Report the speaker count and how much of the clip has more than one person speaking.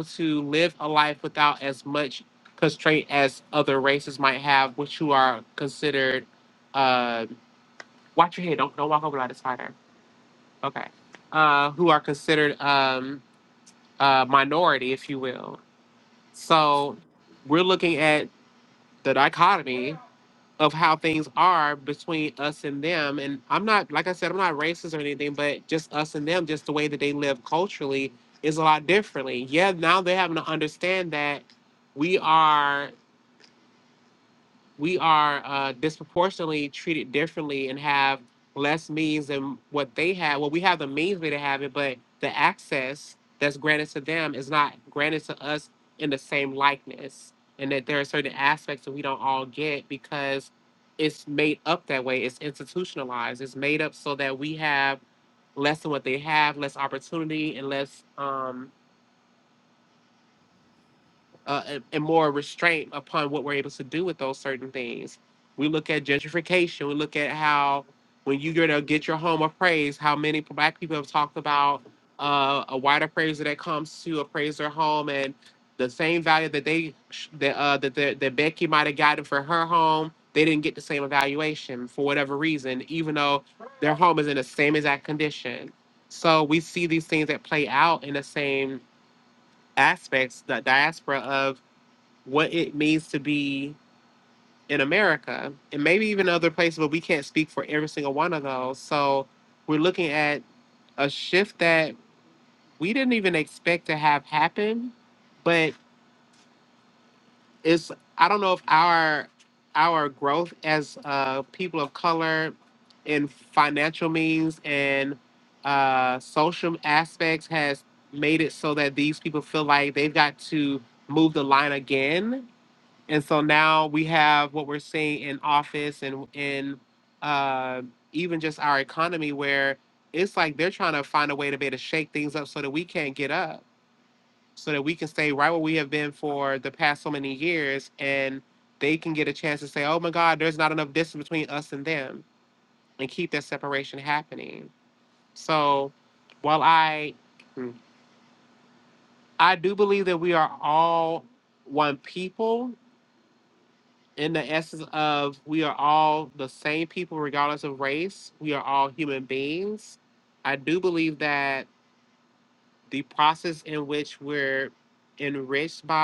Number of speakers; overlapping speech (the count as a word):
one, no overlap